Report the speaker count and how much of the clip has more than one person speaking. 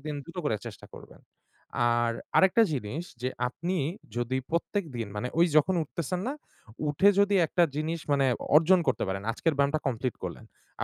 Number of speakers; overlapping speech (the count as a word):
one, no overlap